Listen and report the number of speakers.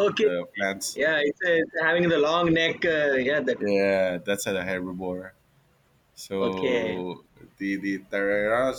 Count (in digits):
2